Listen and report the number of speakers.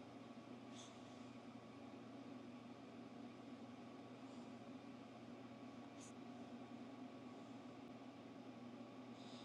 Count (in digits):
0